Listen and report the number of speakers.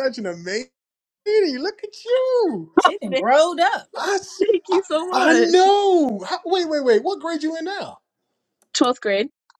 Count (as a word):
three